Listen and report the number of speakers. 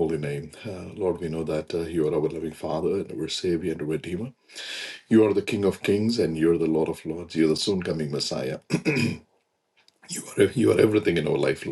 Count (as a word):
one